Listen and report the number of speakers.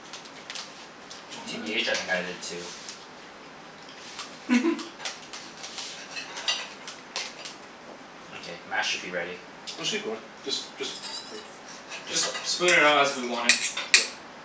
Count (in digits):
3